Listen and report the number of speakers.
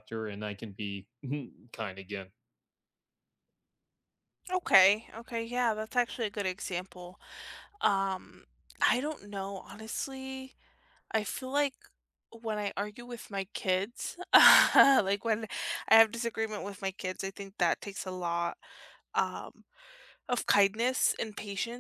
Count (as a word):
two